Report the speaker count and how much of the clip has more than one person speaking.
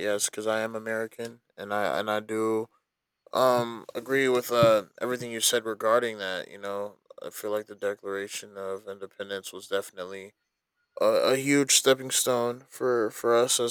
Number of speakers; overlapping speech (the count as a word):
one, no overlap